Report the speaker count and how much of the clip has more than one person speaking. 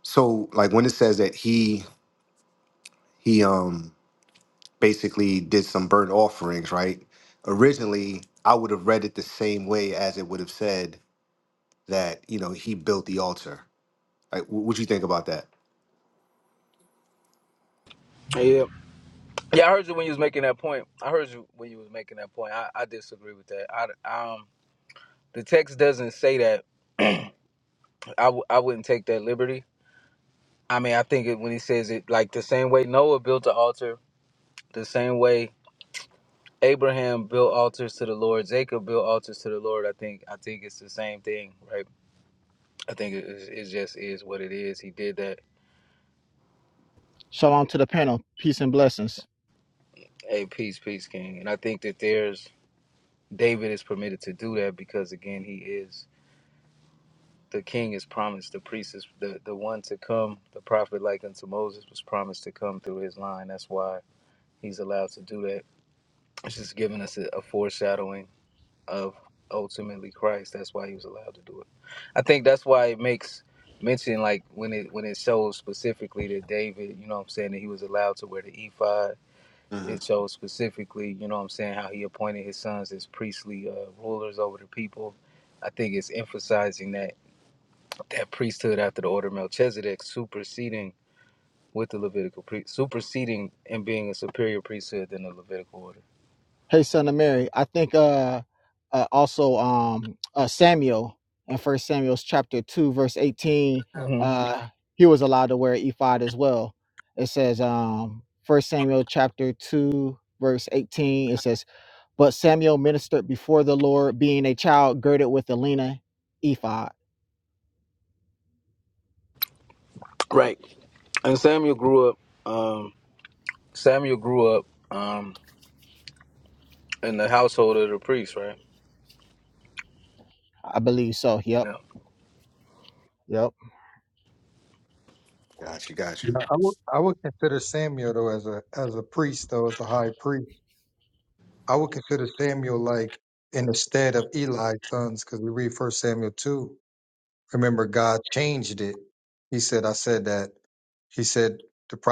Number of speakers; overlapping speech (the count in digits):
4, under 1%